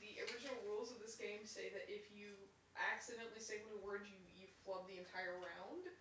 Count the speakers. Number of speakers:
1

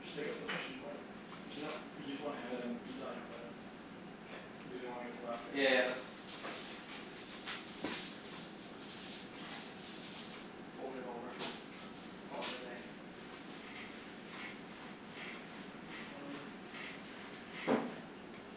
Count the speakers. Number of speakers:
2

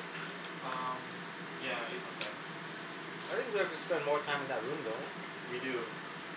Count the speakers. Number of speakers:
2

